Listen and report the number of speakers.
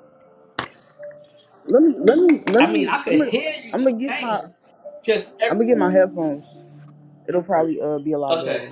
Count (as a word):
two